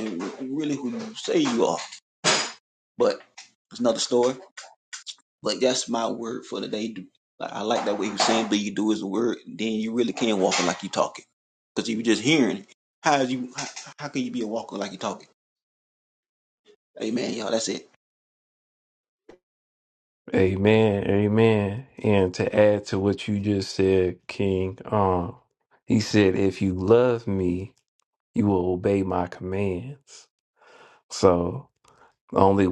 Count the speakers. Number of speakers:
2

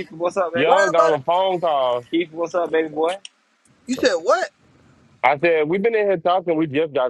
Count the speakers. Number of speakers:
3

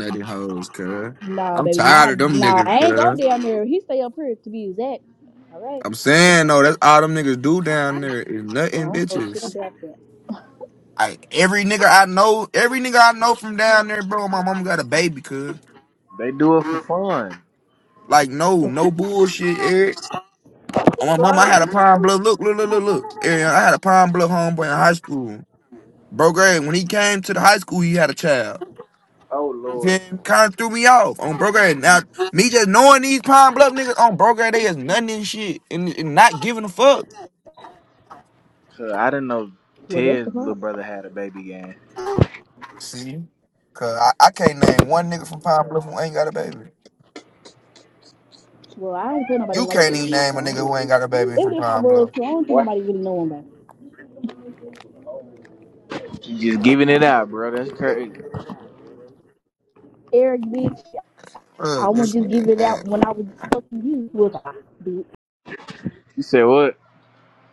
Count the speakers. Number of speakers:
3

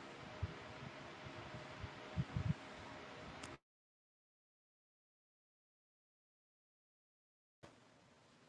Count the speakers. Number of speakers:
0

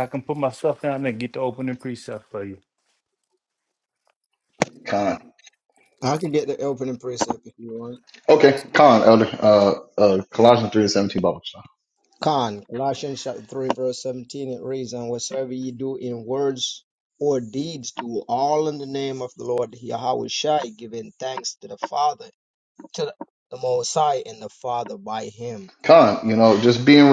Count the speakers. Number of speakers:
3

